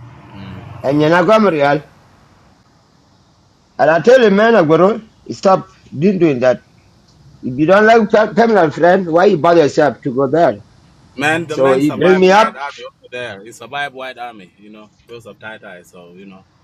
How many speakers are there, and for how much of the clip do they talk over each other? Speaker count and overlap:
2, about 6%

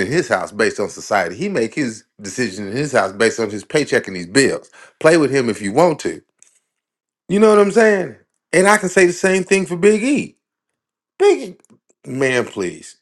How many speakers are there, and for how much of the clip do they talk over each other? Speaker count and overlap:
1, no overlap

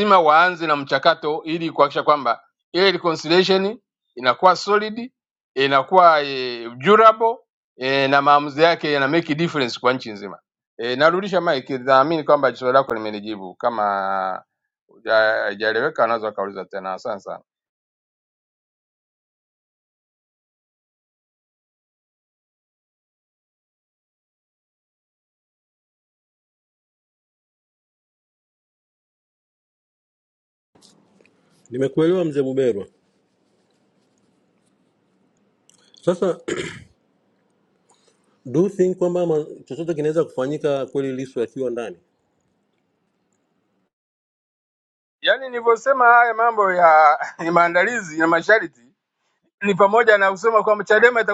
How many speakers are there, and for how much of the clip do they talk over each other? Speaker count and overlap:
2, no overlap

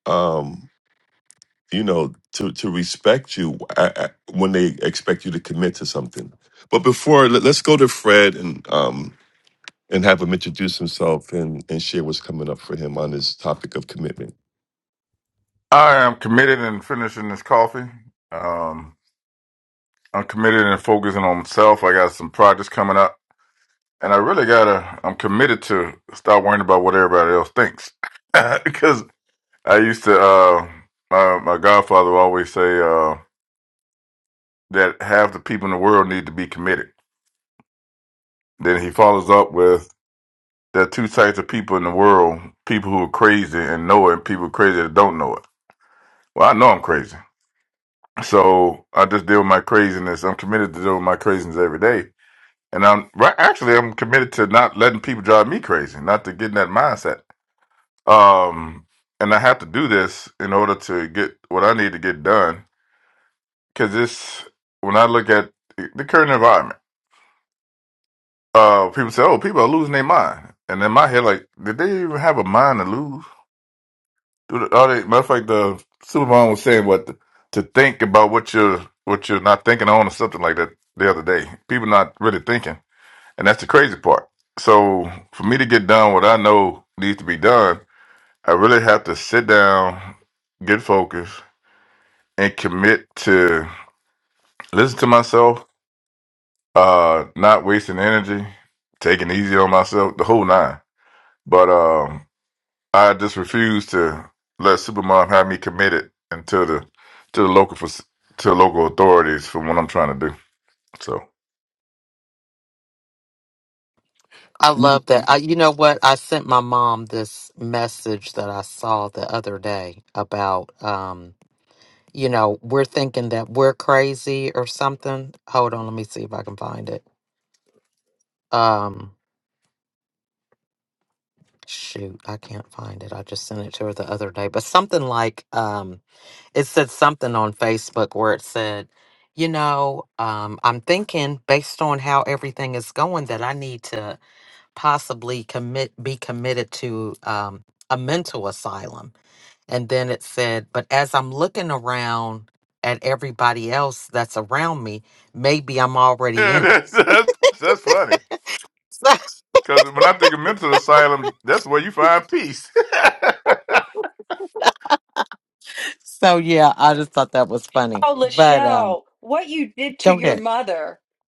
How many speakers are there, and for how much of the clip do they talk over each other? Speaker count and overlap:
4, about 1%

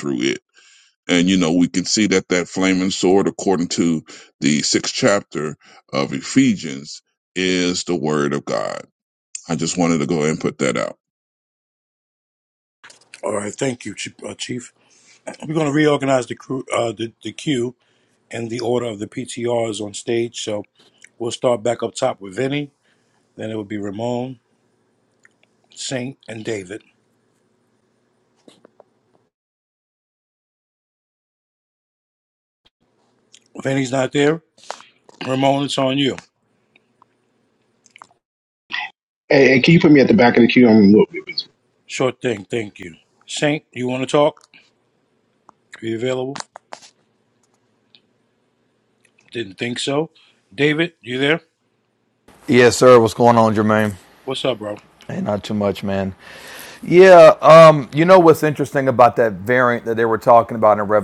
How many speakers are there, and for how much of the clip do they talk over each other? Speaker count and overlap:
4, no overlap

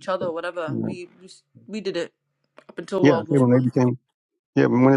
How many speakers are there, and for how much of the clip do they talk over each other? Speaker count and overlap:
2, about 18%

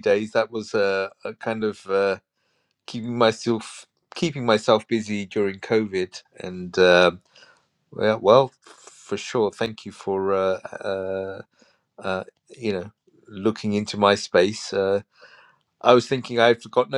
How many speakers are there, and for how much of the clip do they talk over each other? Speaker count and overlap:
1, no overlap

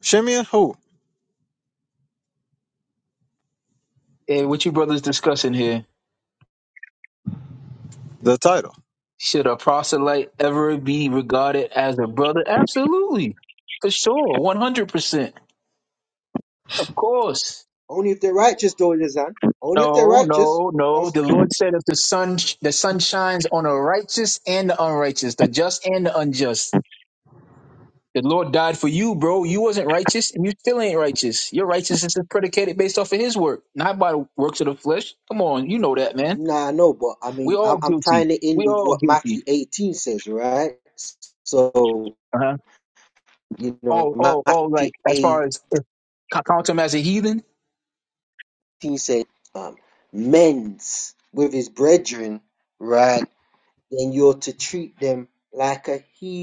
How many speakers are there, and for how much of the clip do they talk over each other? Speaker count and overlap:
3, about 7%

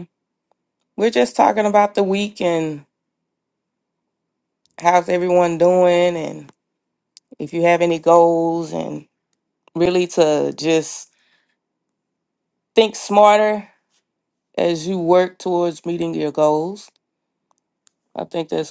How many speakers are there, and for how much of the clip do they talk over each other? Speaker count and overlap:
1, no overlap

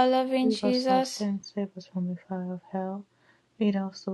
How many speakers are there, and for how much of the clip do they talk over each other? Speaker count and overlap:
2, about 16%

